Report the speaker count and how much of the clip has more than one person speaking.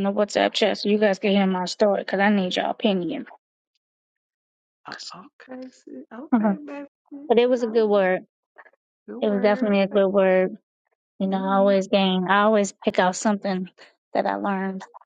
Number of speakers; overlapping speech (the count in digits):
2, about 15%